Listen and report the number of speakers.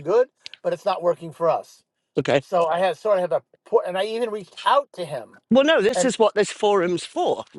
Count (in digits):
2